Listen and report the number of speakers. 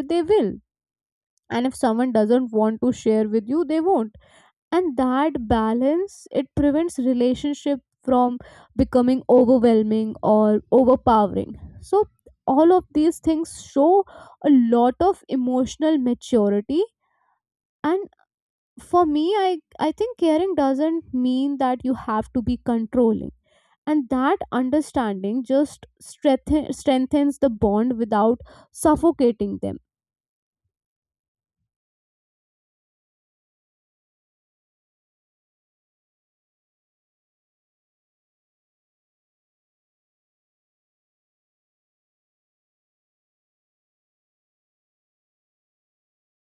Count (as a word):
one